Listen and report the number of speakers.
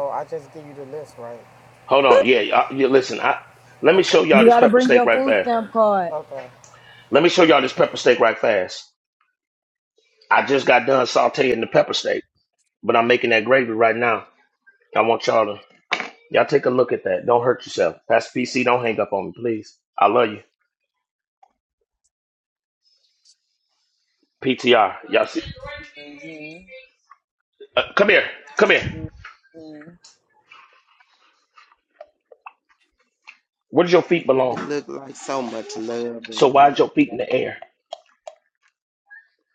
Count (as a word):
five